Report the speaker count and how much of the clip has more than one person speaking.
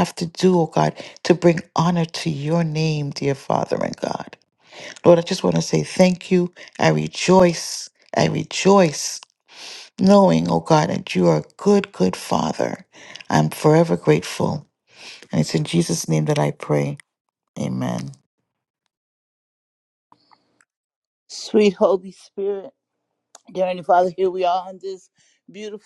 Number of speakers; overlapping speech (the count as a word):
two, no overlap